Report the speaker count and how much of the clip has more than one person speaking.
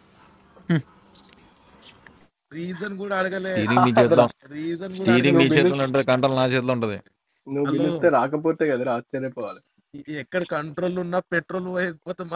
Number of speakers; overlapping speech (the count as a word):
three, about 15%